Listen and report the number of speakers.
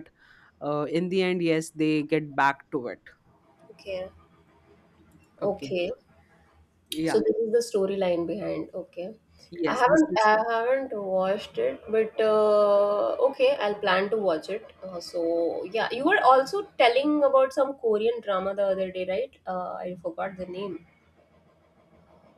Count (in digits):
2